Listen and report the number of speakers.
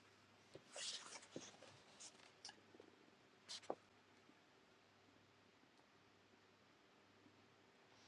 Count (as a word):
zero